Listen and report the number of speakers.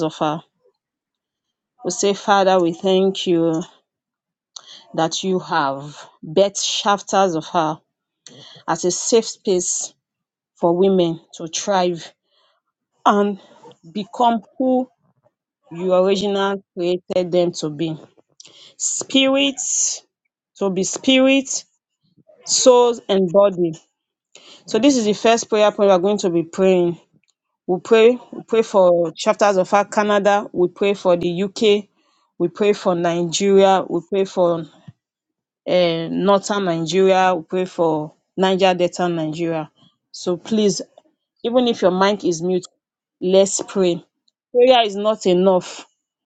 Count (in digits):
1